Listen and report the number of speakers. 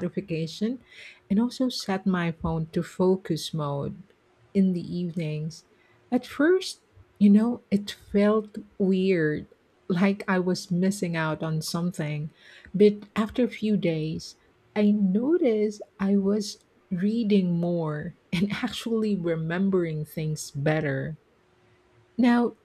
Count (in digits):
1